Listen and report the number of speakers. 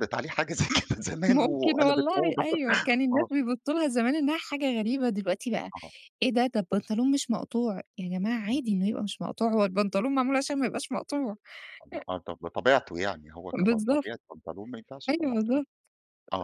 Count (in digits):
2